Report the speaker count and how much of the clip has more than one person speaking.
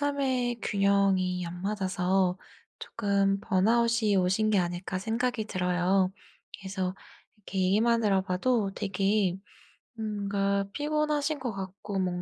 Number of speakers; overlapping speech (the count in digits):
1, no overlap